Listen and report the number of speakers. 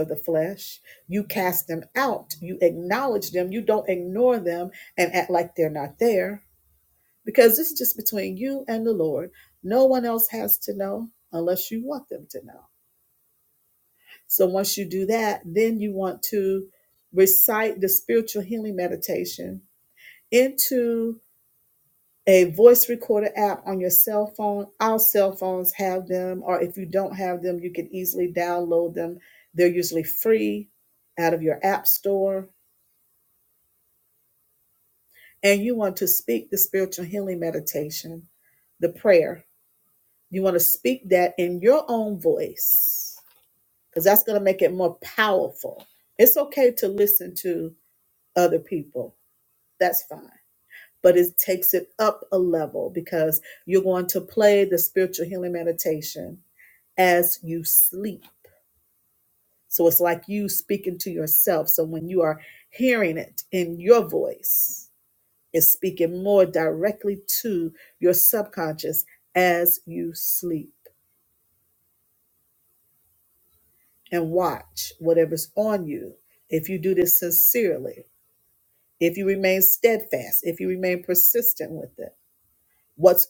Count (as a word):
one